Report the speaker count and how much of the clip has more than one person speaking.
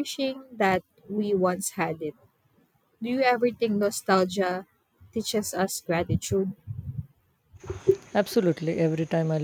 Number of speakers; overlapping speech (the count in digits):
2, no overlap